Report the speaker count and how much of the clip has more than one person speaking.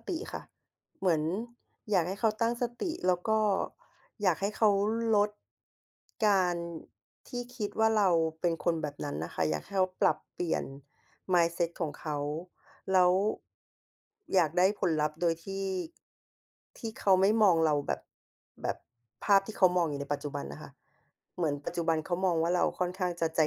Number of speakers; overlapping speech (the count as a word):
one, no overlap